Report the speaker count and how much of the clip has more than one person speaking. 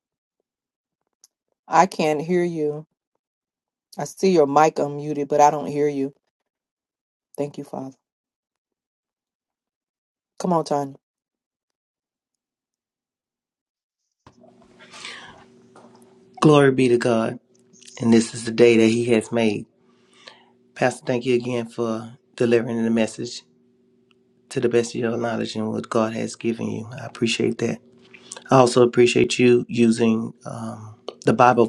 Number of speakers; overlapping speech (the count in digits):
2, no overlap